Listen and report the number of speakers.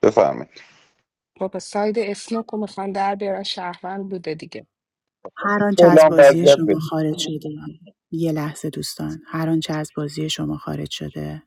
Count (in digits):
3